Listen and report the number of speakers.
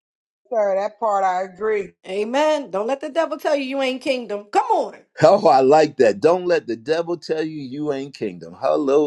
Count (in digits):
3